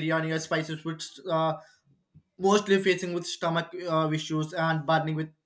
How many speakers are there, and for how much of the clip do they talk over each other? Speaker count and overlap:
1, no overlap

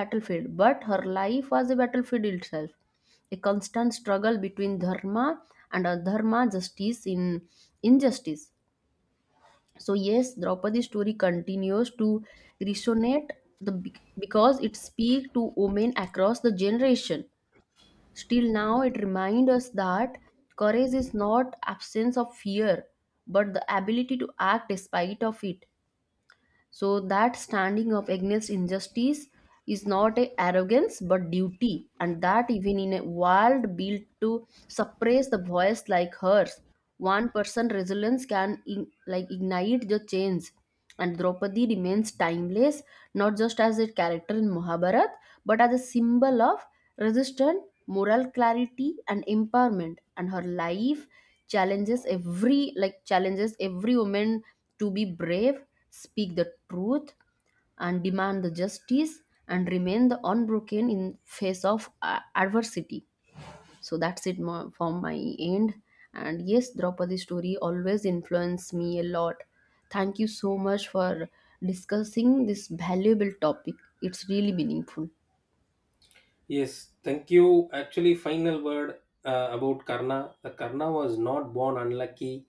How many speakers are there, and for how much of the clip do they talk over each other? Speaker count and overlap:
2, no overlap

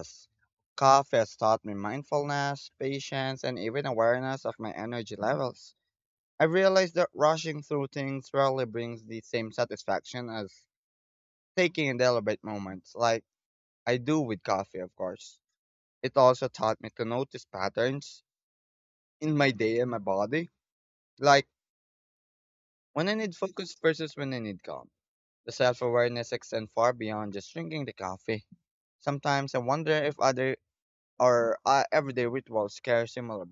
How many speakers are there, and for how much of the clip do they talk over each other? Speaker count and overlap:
1, no overlap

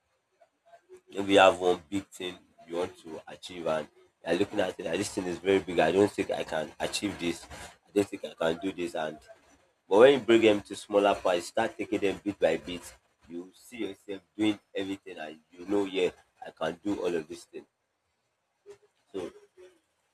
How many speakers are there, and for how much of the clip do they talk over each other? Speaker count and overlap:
1, no overlap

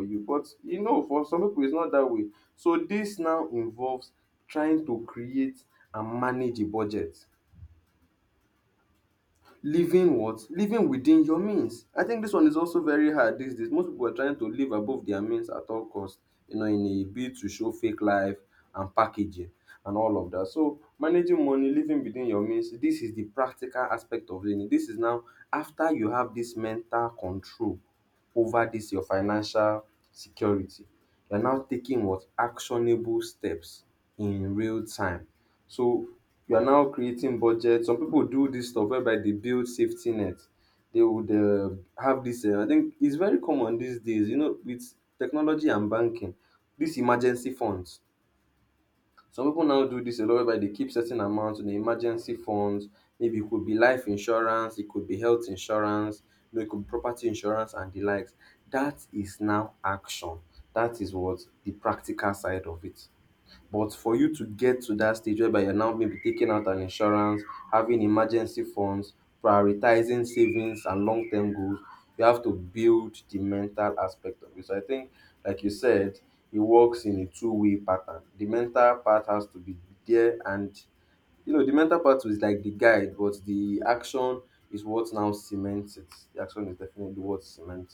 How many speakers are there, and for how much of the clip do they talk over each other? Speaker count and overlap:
1, no overlap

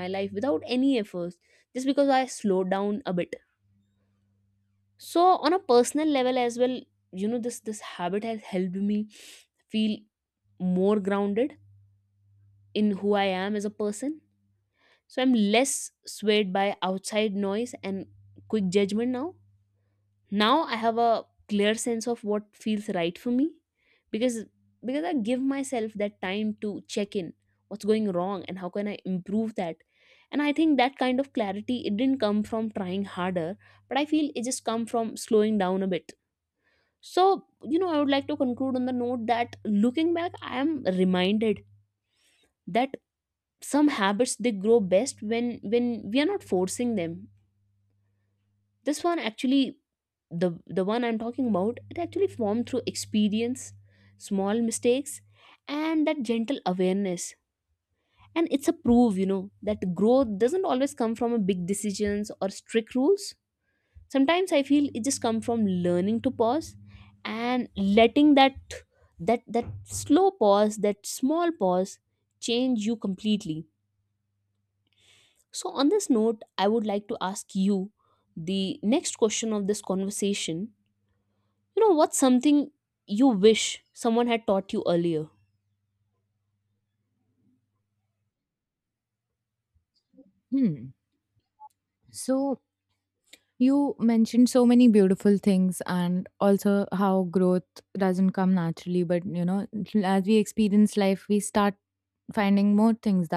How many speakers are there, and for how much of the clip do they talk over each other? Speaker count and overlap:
2, no overlap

